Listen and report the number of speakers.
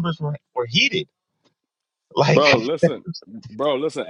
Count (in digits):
2